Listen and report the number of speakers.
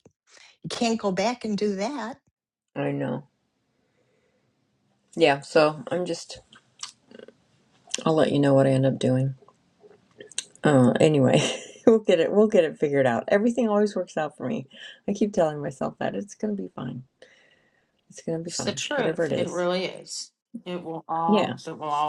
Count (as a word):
three